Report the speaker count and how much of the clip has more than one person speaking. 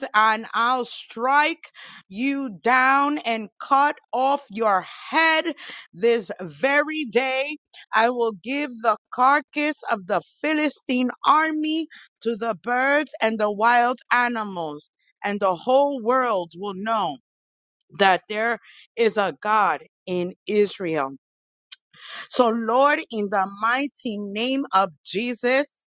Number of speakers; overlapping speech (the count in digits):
1, no overlap